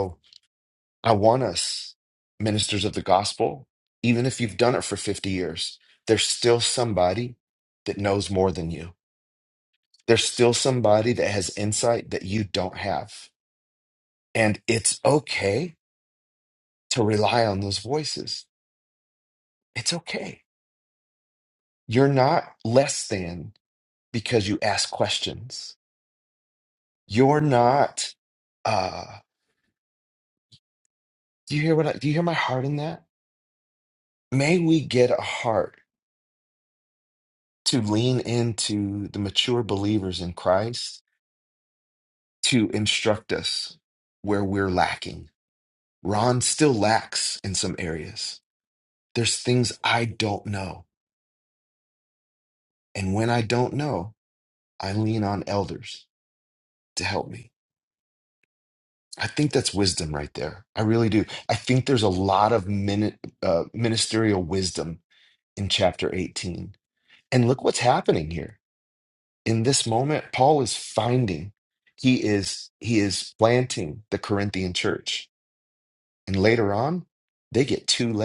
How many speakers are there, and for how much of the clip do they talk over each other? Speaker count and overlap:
one, no overlap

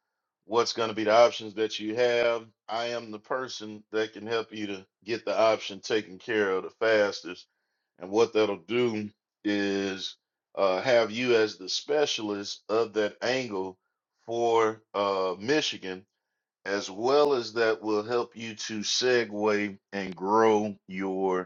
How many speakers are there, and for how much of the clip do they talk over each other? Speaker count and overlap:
one, no overlap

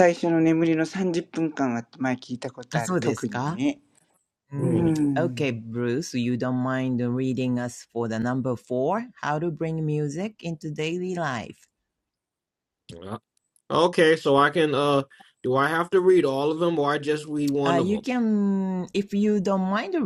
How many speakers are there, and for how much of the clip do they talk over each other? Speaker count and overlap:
three, about 10%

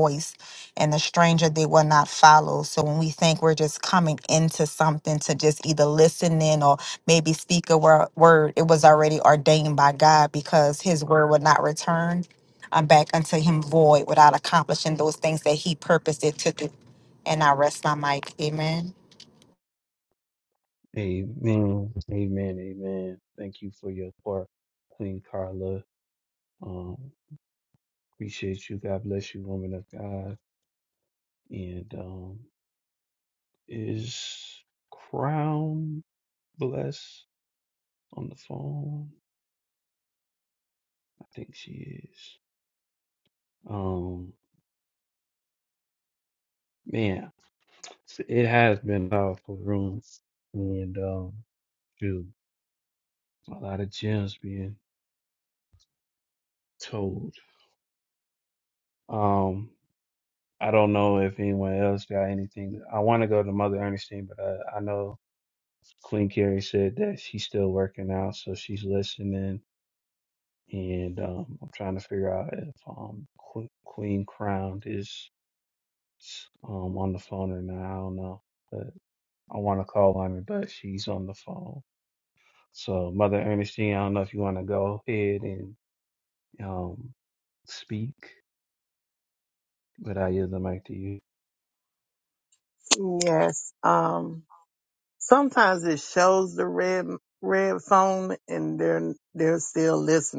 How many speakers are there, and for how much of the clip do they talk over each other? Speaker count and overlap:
three, no overlap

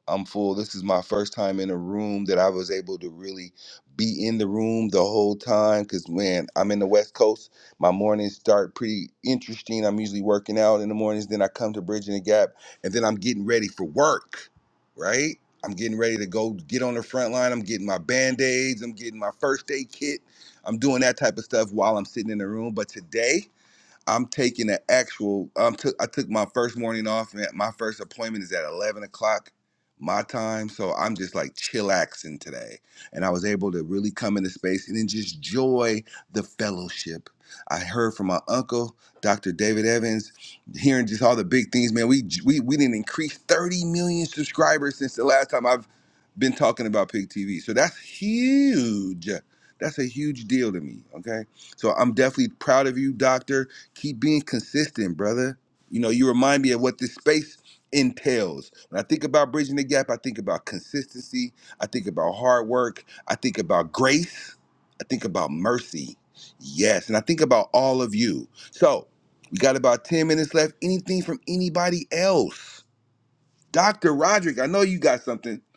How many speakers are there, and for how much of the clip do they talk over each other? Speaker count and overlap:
one, no overlap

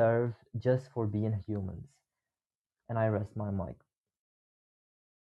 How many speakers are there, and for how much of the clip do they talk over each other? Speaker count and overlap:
one, no overlap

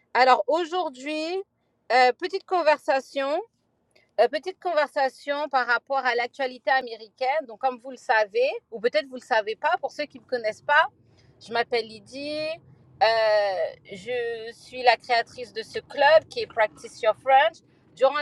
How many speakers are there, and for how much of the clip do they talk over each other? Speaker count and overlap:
one, no overlap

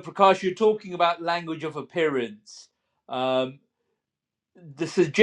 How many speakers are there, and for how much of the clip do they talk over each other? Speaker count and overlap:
one, no overlap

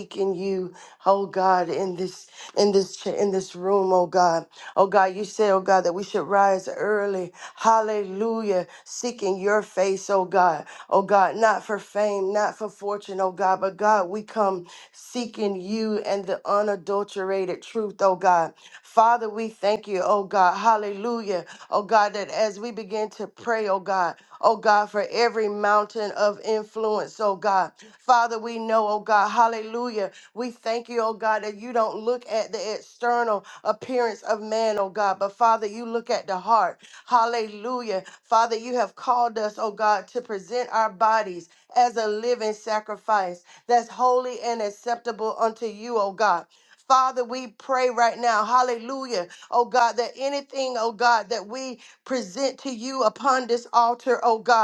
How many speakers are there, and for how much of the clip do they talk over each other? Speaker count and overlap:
one, no overlap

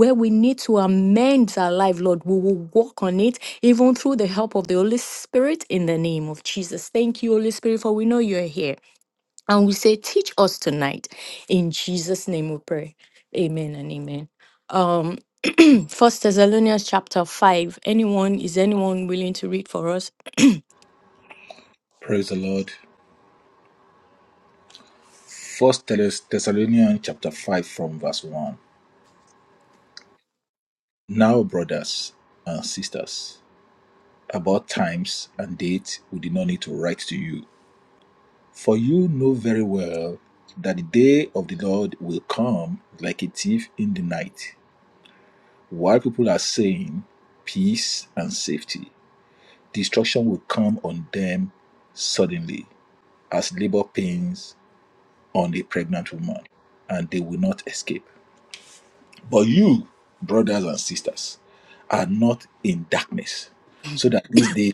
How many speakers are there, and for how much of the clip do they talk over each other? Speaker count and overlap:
two, no overlap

